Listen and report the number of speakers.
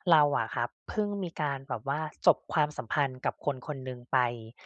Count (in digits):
1